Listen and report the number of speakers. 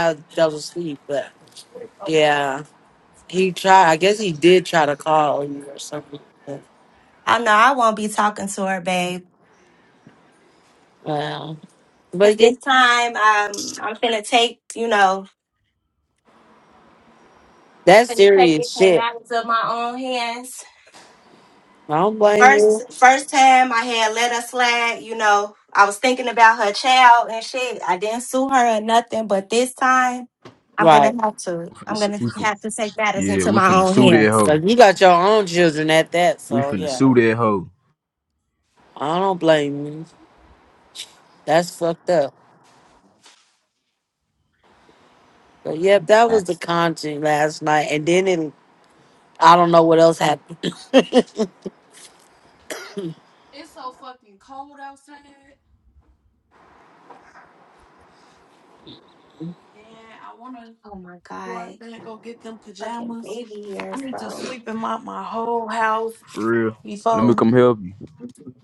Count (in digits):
4